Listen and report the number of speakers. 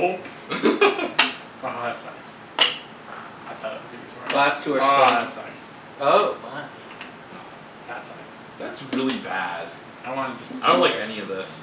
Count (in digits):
3